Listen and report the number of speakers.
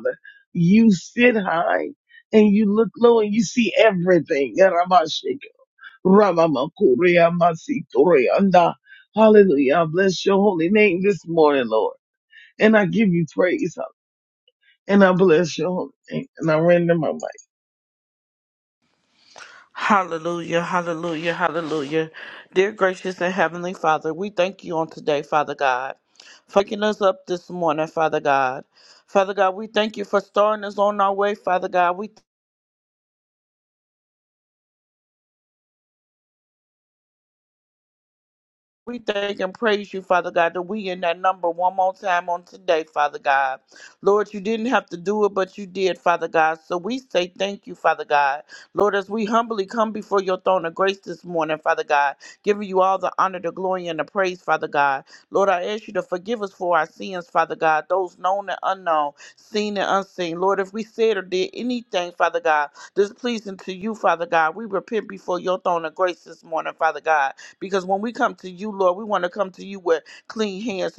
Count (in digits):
2